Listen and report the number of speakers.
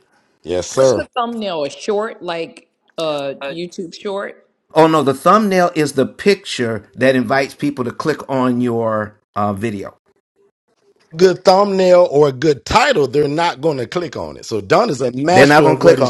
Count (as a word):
three